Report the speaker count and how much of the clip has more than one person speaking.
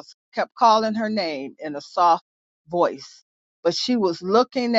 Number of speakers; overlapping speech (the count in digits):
1, no overlap